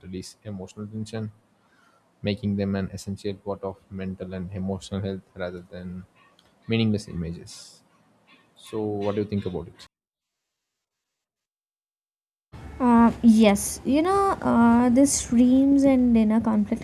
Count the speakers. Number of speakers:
two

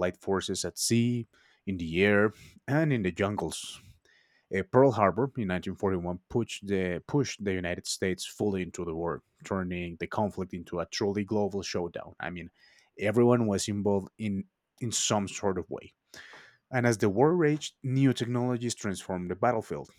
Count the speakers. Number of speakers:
one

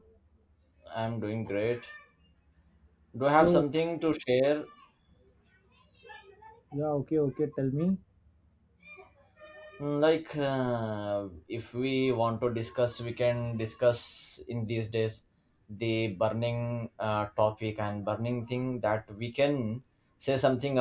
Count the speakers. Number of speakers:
two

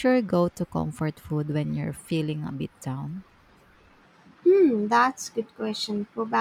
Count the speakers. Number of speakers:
two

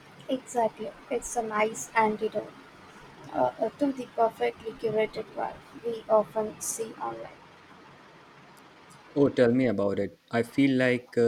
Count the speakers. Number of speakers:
two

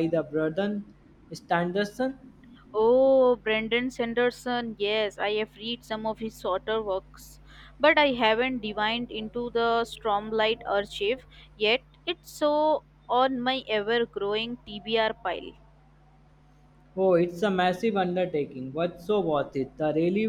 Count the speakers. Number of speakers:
two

